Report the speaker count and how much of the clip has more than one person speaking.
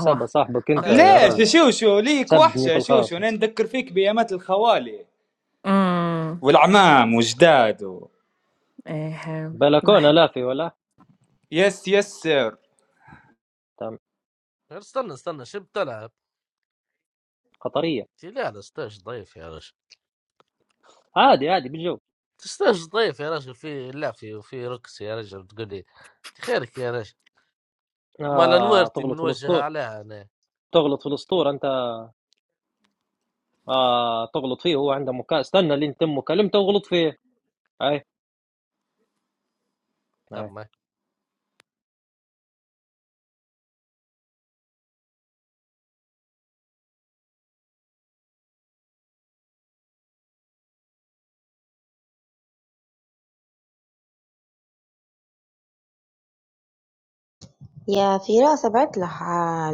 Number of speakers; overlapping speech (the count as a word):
five, about 6%